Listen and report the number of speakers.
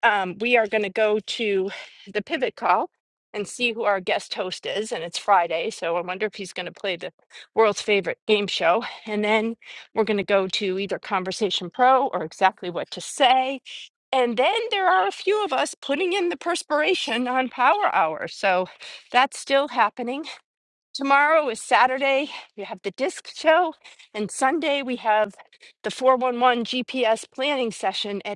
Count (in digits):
1